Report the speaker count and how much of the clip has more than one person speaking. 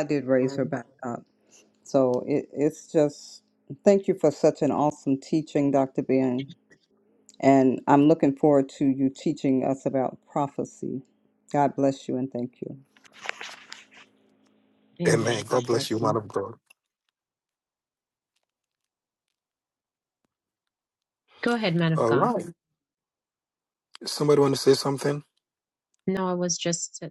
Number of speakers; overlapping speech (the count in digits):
3, about 5%